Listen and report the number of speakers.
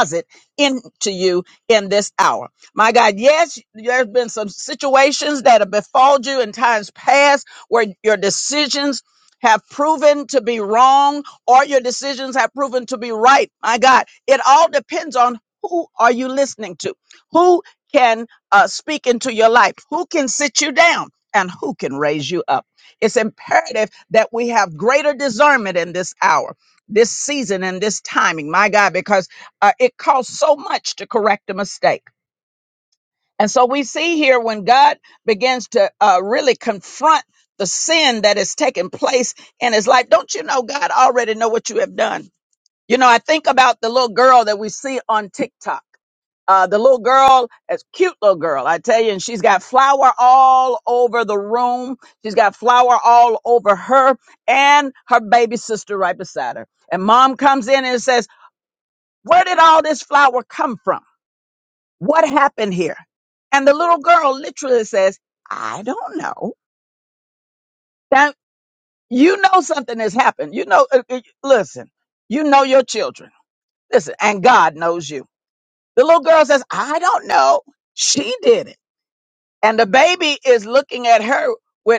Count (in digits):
1